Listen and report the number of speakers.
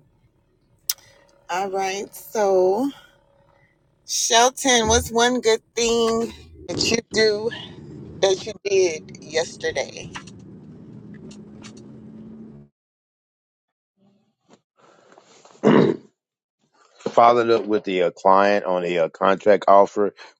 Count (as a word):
two